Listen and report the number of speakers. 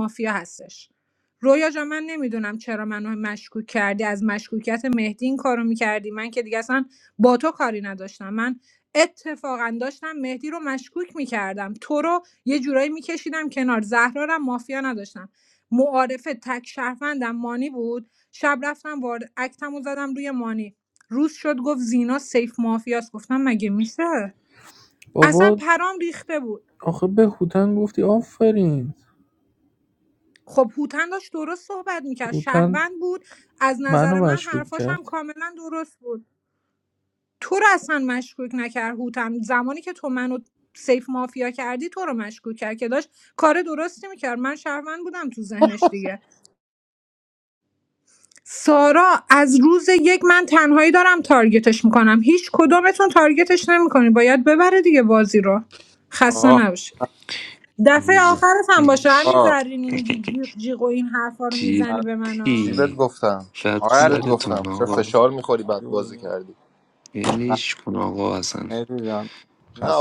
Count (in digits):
5